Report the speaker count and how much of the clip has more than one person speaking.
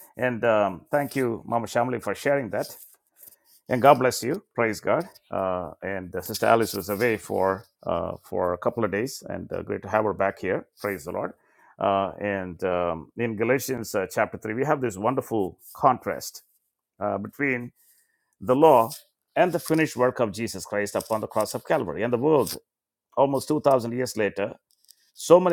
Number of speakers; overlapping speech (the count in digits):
1, no overlap